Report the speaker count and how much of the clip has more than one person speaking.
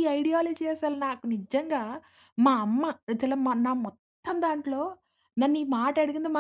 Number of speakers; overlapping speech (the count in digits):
1, no overlap